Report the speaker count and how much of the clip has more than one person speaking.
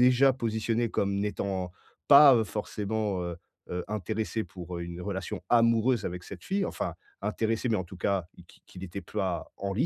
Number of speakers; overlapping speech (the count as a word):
one, no overlap